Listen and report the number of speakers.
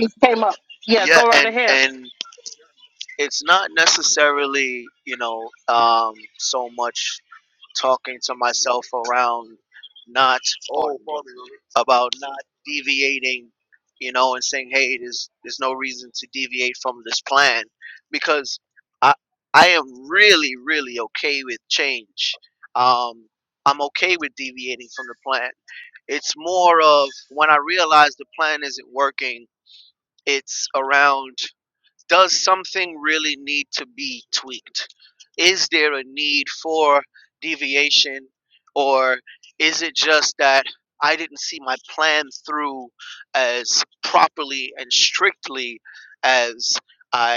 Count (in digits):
2